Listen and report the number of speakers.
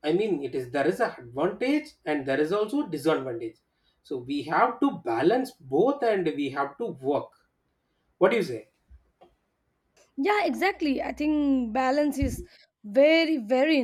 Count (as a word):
two